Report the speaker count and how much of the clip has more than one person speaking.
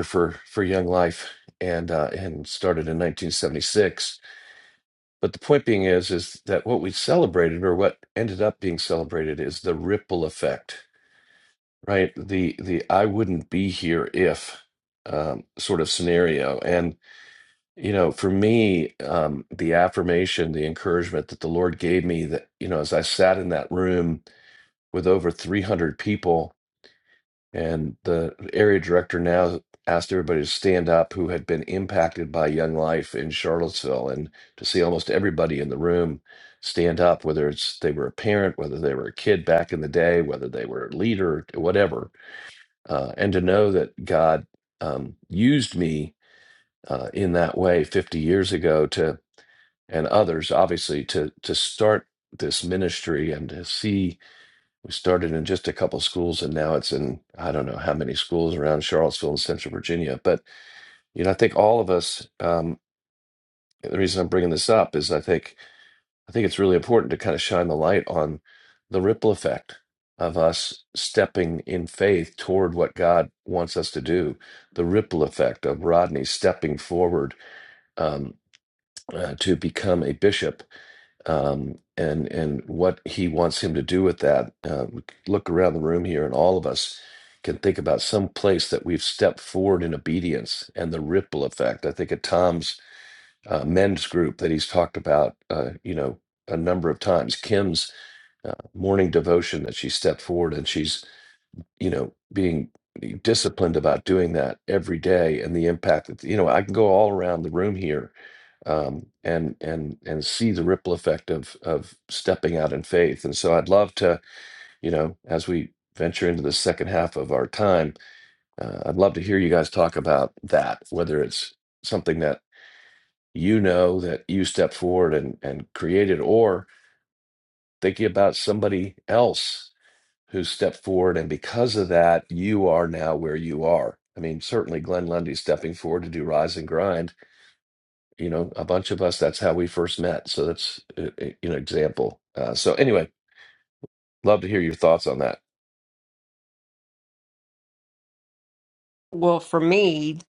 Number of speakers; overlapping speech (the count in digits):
2, no overlap